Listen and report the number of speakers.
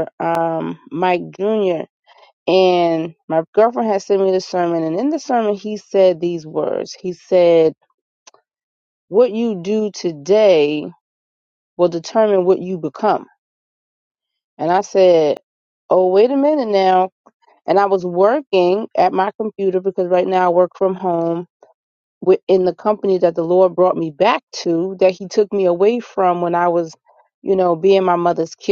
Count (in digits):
1